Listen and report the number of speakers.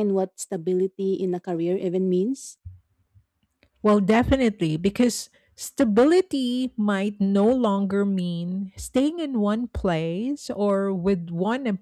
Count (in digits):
2